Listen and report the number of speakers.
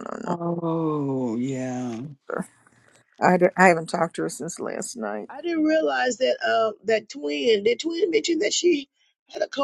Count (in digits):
3